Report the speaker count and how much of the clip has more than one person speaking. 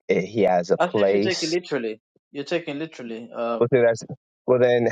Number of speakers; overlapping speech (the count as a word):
two, about 17%